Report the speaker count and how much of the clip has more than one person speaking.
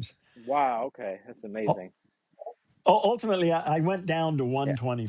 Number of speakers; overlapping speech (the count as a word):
two, about 5%